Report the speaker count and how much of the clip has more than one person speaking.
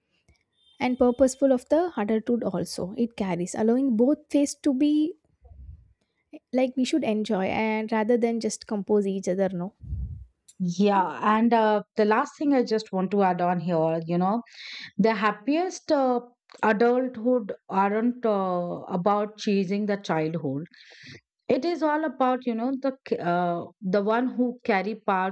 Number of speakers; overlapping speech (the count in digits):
2, no overlap